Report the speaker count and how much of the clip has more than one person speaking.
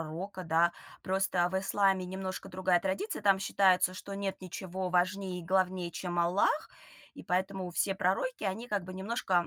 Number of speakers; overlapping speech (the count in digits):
1, no overlap